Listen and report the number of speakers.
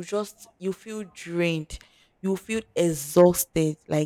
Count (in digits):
1